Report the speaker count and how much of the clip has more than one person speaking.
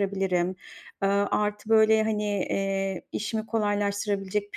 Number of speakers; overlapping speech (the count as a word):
one, no overlap